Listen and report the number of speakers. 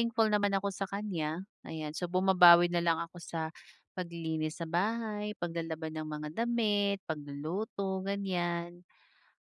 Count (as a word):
one